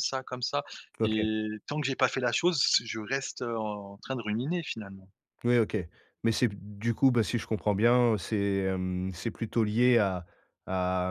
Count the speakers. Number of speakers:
2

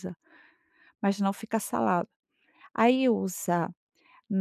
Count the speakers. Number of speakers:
1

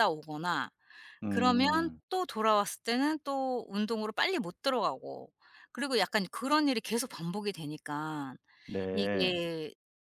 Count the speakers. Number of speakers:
2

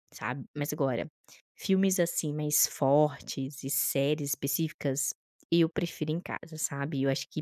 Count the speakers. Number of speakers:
1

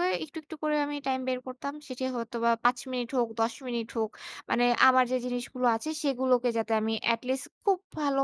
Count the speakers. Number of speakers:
1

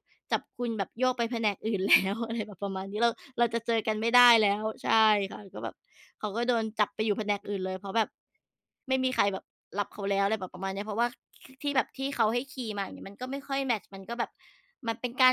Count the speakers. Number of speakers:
1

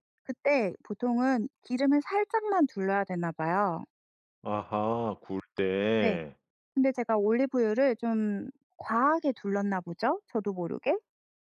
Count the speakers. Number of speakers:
2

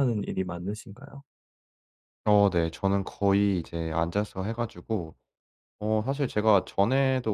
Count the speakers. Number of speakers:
2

